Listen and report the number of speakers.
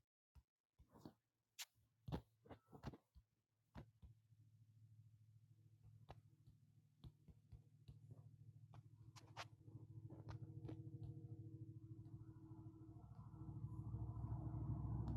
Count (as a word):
zero